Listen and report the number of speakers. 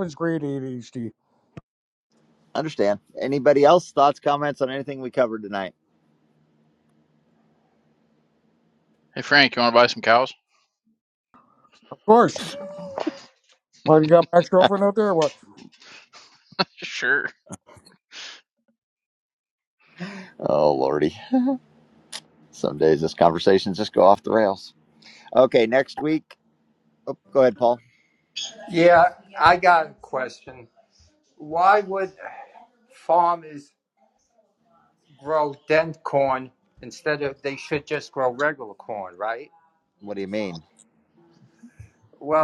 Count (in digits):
4